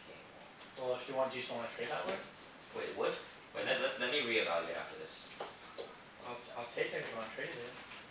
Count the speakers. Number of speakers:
two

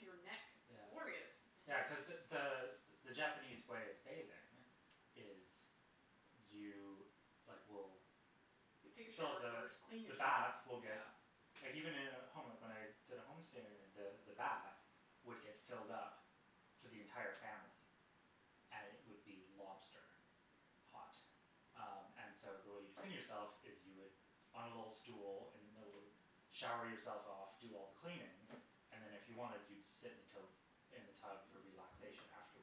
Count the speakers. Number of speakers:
two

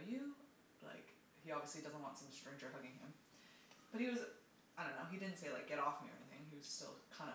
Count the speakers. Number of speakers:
one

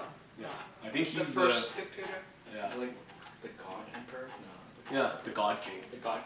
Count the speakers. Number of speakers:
three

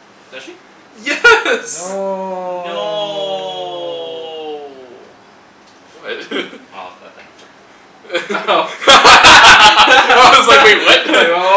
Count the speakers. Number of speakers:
four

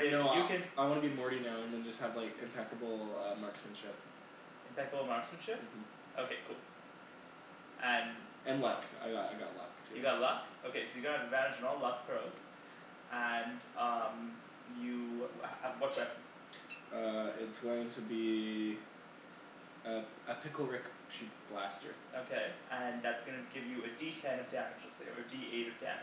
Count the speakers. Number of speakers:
two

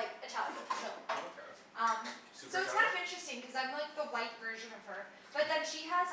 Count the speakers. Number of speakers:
two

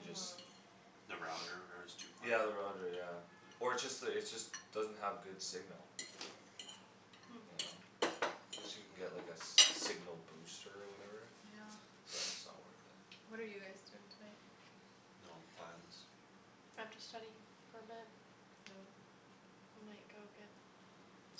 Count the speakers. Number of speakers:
four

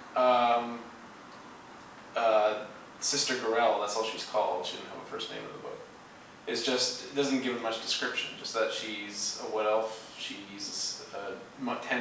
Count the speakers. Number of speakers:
one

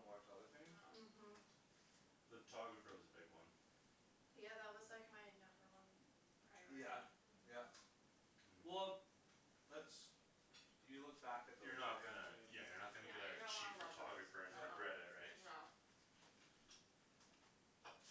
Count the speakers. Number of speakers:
four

